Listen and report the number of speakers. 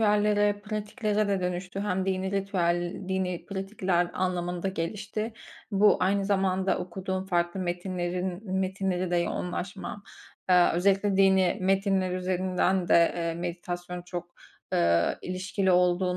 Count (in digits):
1